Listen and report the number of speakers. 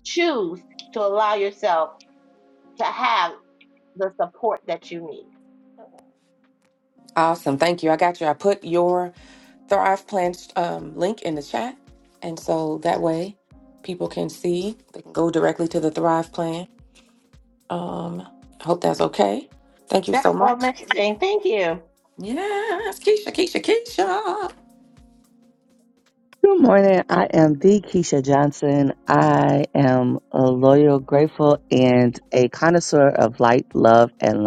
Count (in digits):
3